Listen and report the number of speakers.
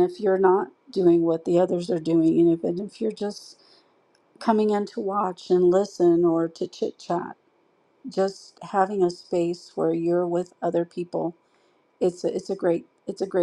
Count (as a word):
one